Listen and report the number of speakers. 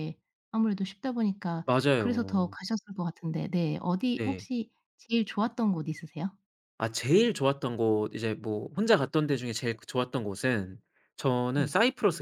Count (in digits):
2